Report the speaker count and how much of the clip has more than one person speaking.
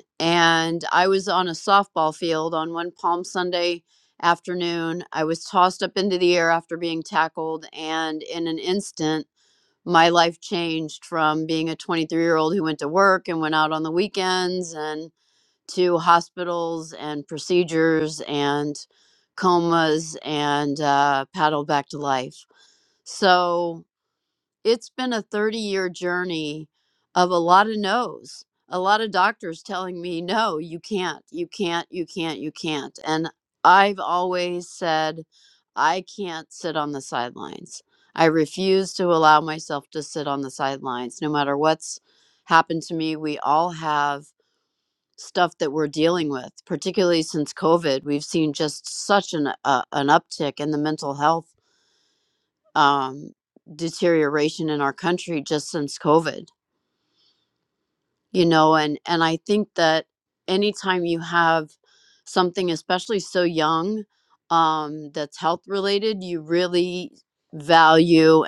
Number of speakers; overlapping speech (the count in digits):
1, no overlap